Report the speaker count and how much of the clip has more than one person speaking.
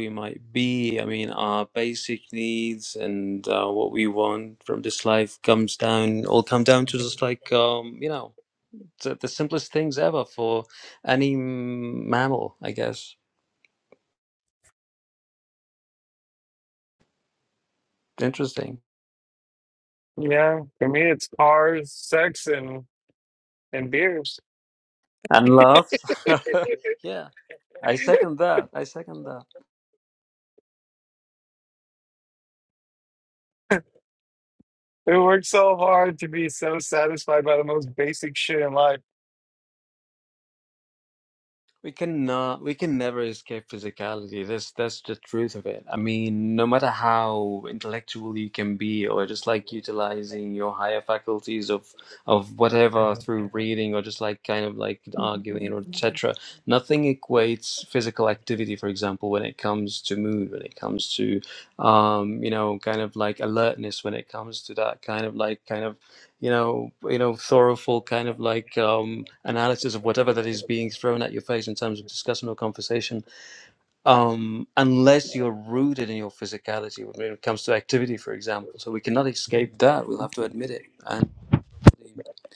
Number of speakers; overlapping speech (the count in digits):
2, no overlap